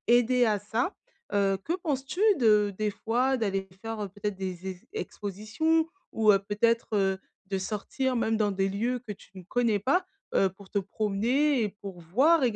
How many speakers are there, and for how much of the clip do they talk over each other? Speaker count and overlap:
1, no overlap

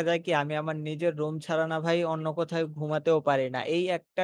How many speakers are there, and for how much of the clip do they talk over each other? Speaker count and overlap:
1, no overlap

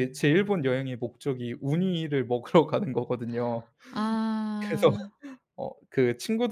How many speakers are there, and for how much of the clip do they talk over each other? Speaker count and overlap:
2, about 5%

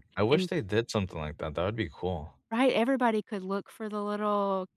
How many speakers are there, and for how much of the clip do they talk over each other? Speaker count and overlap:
2, about 4%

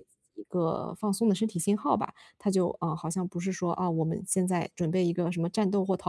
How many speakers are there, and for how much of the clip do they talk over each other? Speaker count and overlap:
1, no overlap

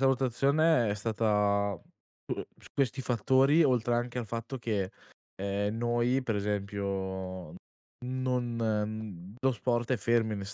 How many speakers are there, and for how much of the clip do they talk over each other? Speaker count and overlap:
1, no overlap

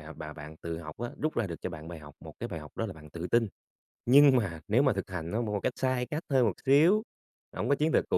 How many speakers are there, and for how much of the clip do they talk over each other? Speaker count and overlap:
1, no overlap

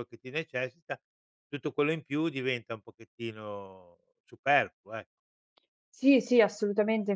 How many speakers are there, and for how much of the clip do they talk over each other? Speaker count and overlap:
2, no overlap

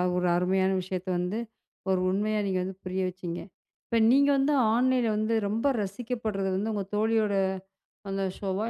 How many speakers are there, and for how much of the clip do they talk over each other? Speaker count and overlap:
1, no overlap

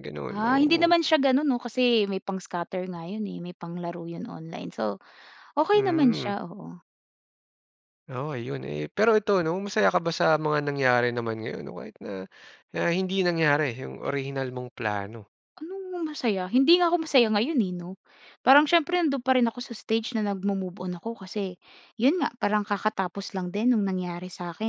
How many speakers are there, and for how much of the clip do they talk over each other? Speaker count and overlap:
2, about 5%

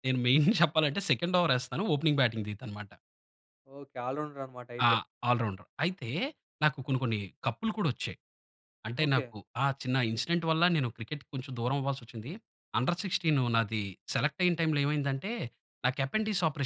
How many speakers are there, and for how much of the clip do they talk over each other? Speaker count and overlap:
2, about 3%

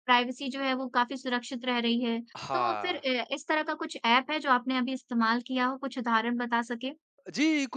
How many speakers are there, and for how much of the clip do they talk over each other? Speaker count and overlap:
2, about 8%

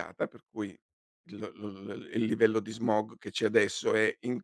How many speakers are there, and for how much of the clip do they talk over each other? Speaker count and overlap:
1, no overlap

